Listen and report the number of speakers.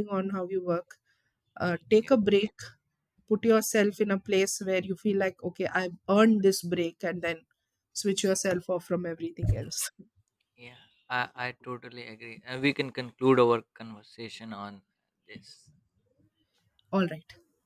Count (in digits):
2